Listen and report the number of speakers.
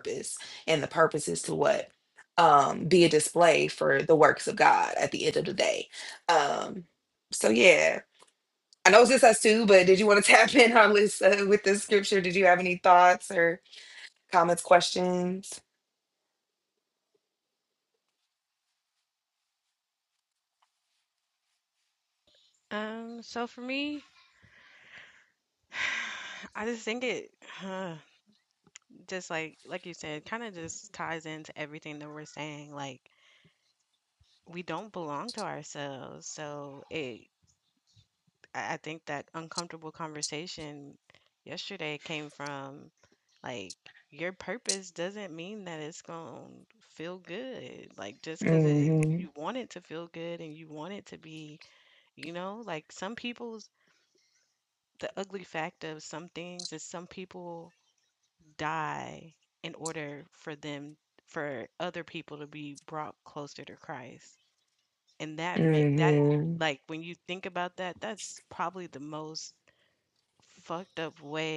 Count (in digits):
2